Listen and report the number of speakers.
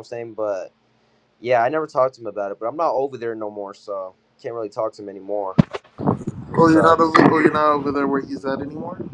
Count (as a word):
two